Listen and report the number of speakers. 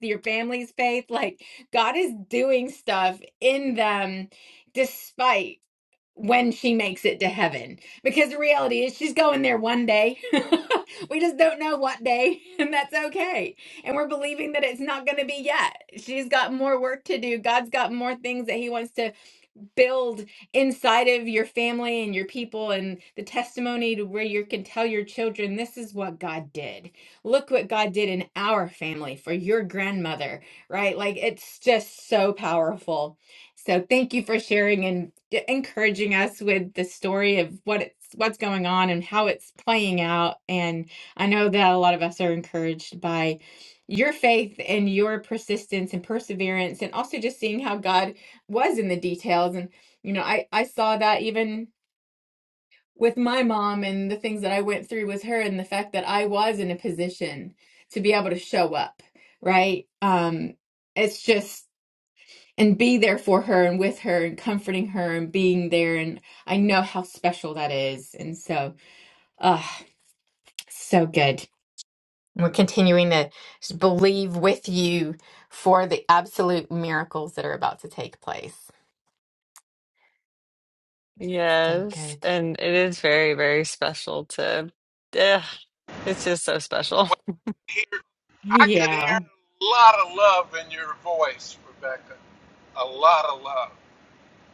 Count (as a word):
three